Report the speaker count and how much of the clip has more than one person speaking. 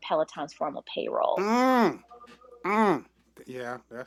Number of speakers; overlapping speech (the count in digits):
2, about 1%